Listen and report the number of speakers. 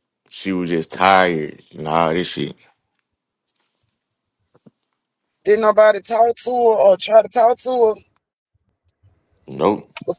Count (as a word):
two